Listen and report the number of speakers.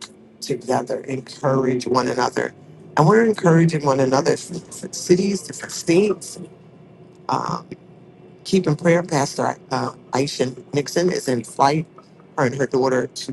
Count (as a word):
one